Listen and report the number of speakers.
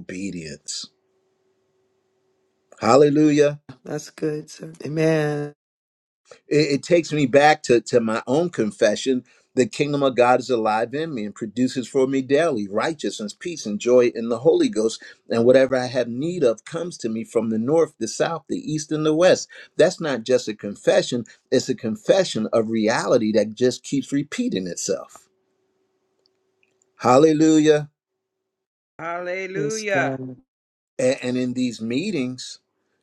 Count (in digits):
3